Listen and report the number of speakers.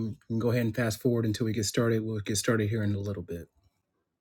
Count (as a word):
one